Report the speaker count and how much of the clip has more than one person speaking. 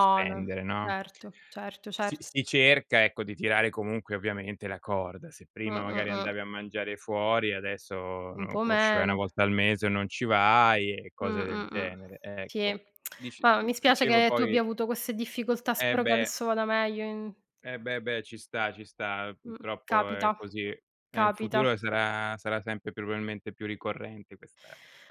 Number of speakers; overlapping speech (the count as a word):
two, about 25%